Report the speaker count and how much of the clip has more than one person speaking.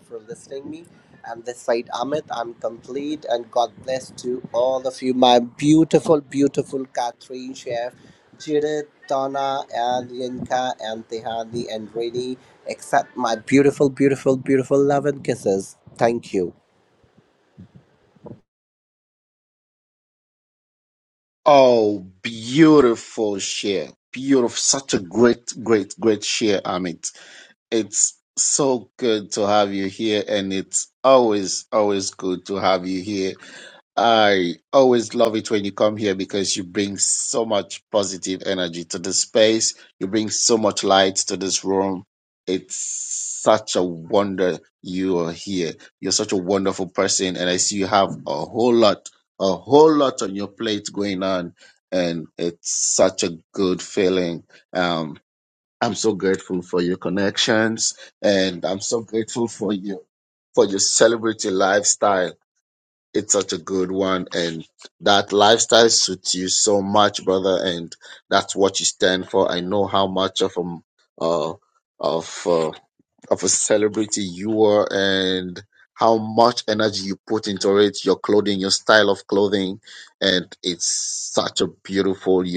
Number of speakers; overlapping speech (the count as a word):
two, no overlap